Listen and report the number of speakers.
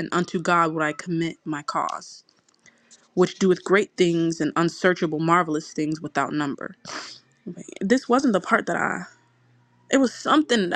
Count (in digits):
1